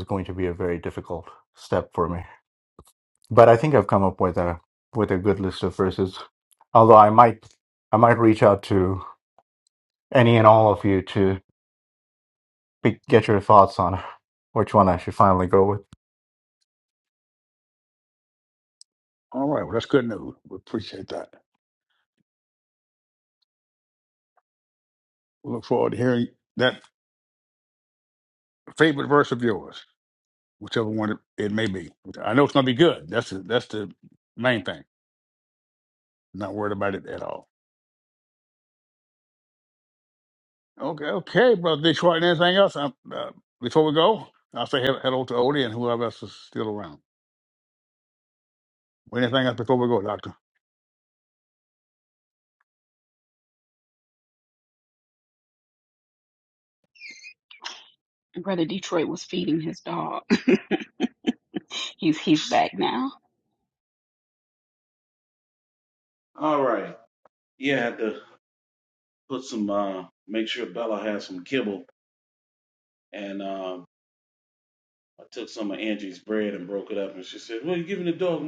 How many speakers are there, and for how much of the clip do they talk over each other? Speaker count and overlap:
4, no overlap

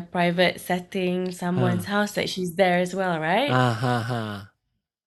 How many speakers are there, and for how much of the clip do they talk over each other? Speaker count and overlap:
2, about 8%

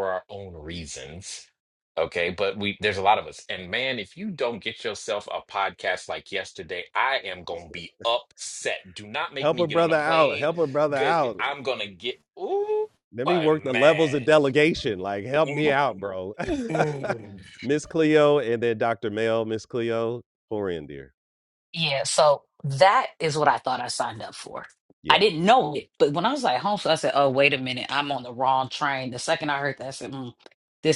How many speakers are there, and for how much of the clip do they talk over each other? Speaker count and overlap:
3, about 9%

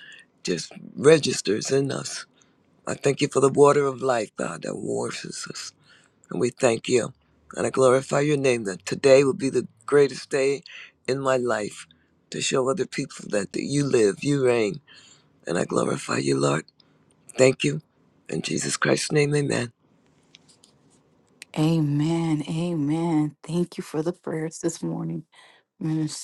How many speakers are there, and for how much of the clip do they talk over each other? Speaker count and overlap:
2, no overlap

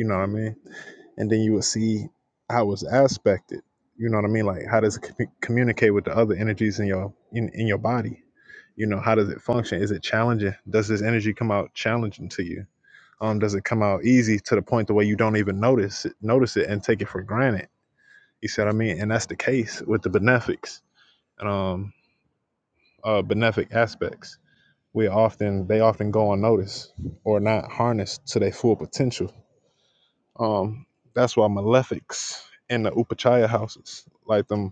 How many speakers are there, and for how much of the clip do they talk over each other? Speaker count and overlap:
1, no overlap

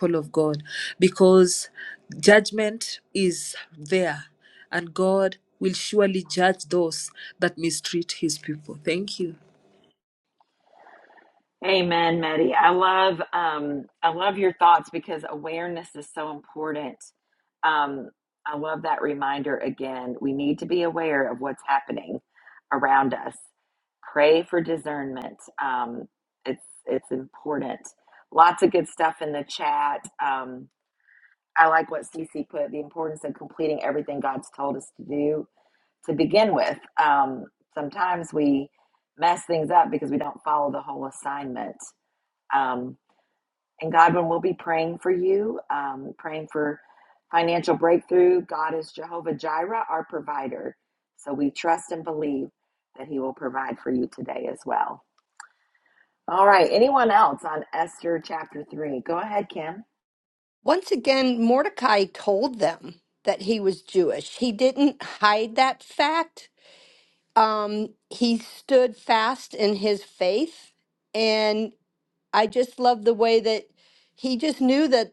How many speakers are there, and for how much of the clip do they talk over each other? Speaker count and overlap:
3, no overlap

